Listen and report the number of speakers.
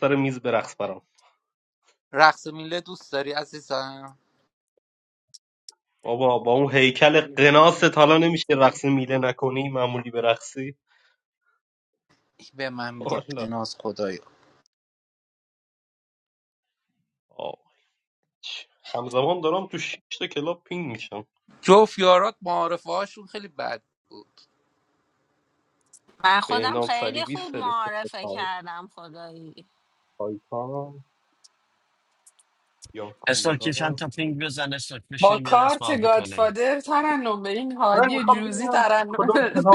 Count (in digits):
5